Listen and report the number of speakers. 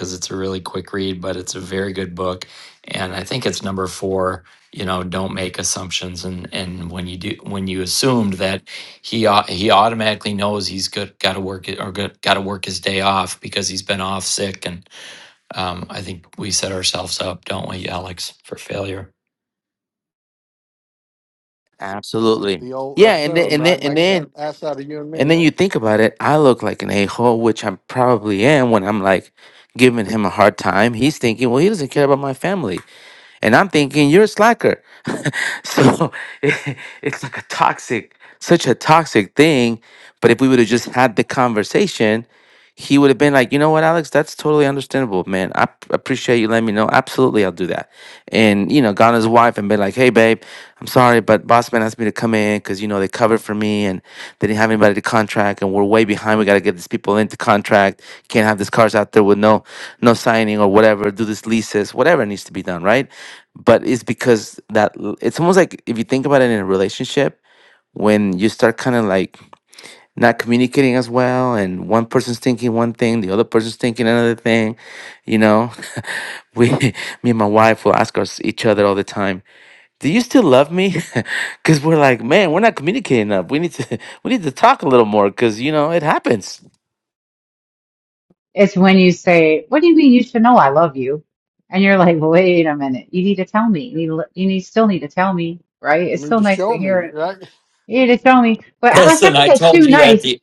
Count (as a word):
four